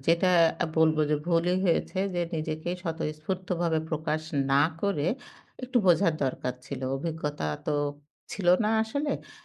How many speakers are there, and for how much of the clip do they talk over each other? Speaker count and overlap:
one, no overlap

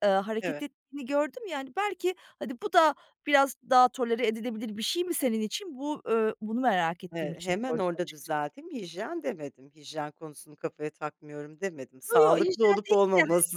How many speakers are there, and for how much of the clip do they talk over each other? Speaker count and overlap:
two, about 20%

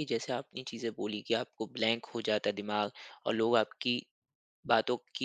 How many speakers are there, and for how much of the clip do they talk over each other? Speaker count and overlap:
one, no overlap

